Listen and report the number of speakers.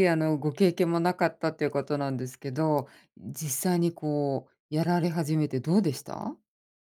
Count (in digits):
1